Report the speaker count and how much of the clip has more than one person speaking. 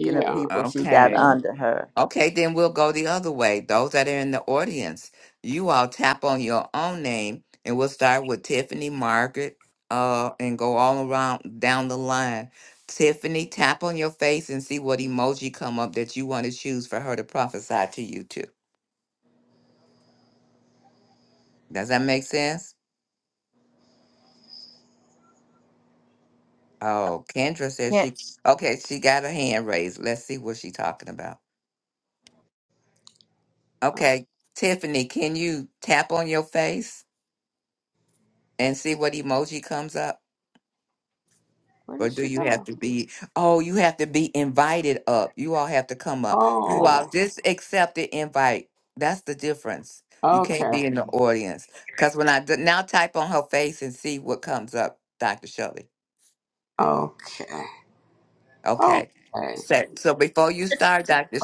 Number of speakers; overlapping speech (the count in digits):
3, about 6%